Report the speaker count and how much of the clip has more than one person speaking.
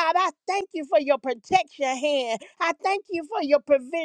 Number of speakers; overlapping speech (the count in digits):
1, no overlap